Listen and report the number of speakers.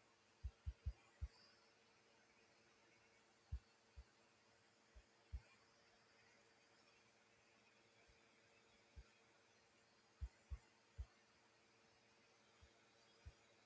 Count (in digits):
0